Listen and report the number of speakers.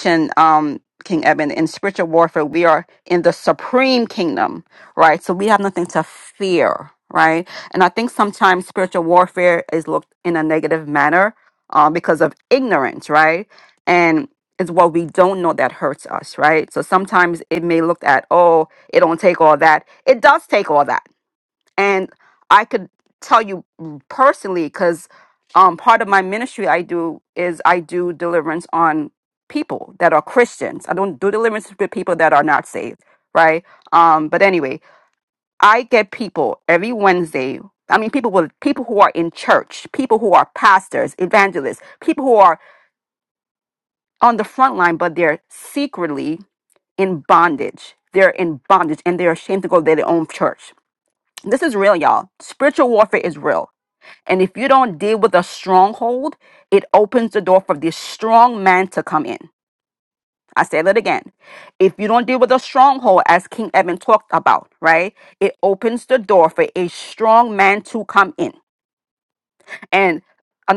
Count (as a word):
one